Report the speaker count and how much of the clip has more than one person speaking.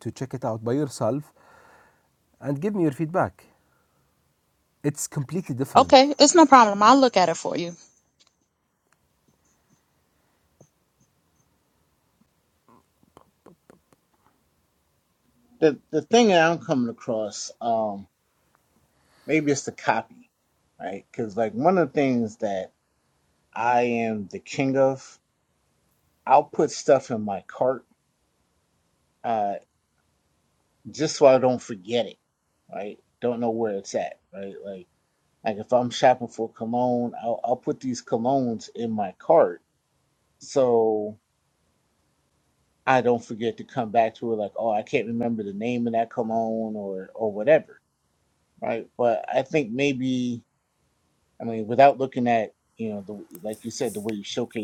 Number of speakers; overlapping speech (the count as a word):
three, under 1%